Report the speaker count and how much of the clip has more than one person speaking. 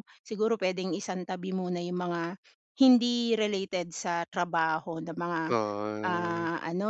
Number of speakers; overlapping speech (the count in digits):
2, about 6%